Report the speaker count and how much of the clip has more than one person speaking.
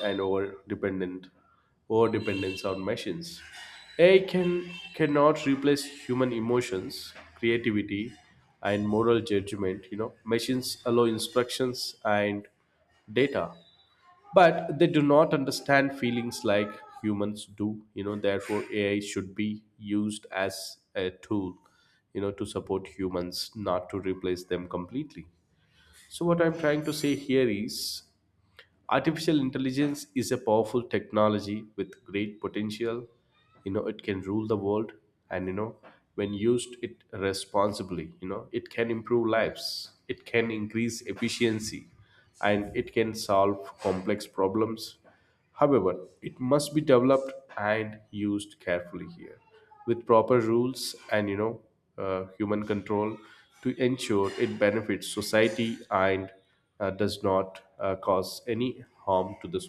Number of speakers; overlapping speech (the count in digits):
1, no overlap